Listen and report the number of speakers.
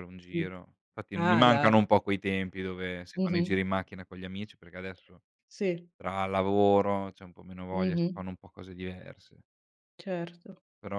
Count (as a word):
two